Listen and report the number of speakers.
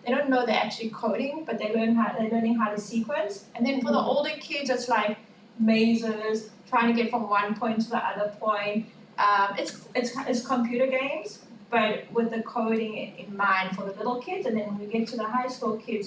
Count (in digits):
1